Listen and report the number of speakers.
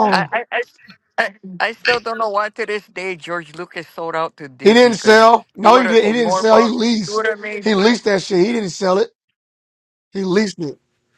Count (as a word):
two